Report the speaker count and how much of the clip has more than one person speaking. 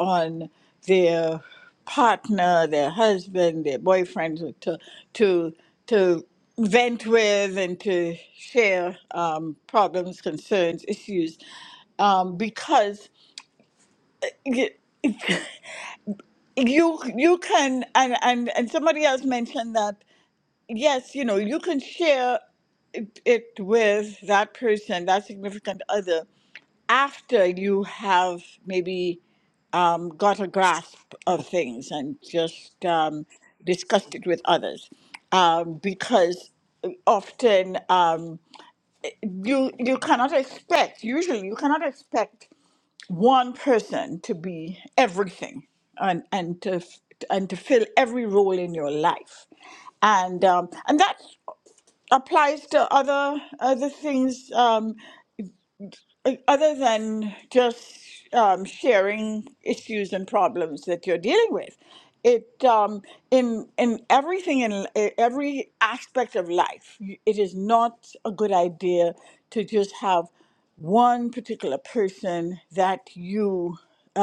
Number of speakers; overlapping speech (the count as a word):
one, no overlap